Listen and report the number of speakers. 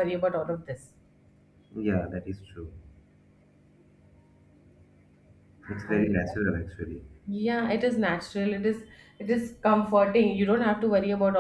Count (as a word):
two